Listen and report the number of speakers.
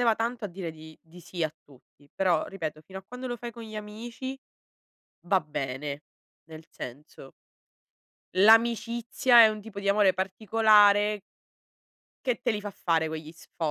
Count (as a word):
one